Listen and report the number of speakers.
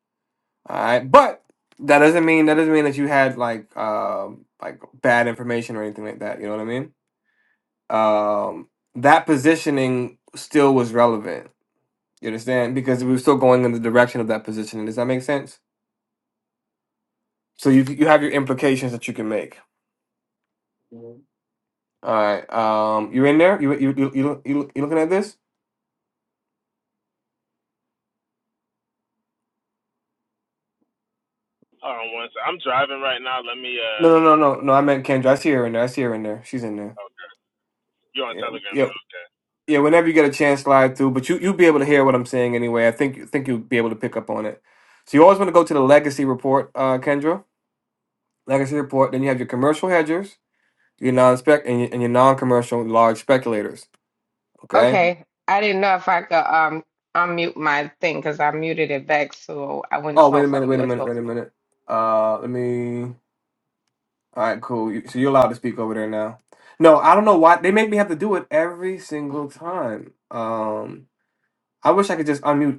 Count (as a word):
three